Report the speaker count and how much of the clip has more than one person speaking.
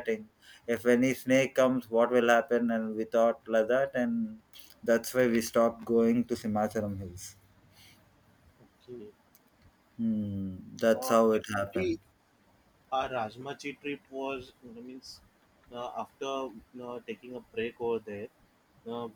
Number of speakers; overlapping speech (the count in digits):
2, about 5%